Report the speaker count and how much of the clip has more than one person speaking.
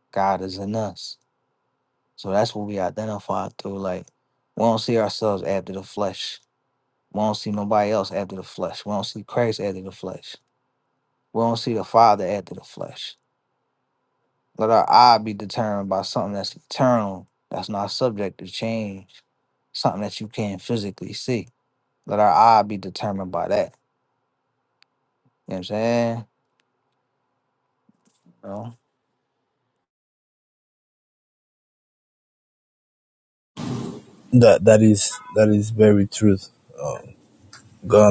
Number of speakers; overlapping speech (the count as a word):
two, no overlap